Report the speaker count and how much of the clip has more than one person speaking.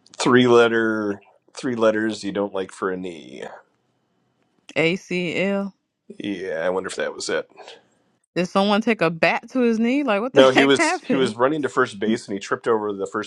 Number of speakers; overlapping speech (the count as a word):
two, about 7%